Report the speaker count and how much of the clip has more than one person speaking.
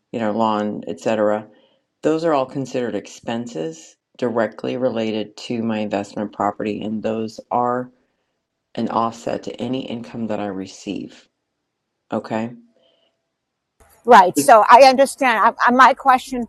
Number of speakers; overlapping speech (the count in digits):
2, about 1%